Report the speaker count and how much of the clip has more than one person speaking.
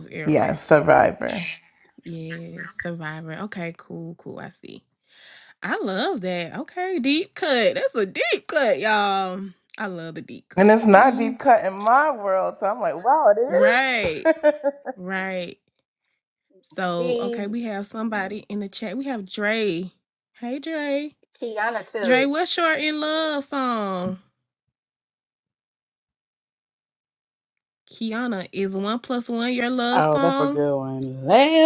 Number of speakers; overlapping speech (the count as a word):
four, about 11%